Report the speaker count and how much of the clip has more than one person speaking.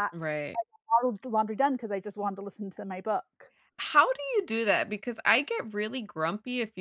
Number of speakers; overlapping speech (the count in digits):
2, no overlap